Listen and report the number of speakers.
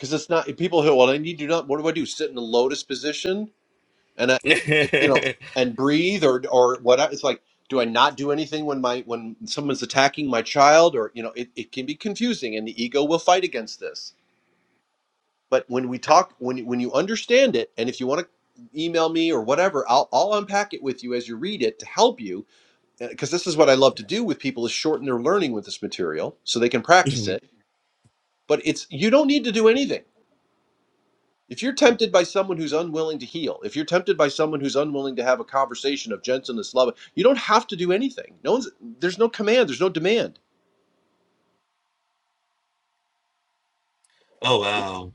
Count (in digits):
2